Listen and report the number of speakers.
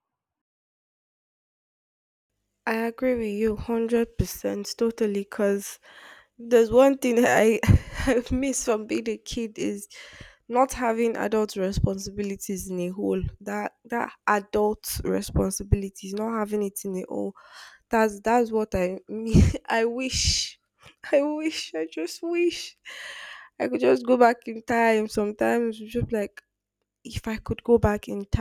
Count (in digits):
1